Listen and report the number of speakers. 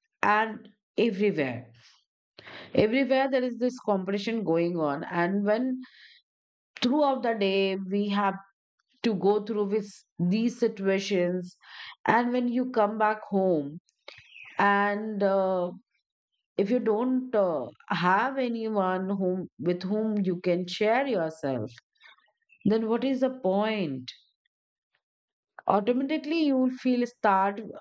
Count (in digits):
1